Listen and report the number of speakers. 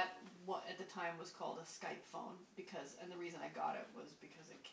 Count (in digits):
1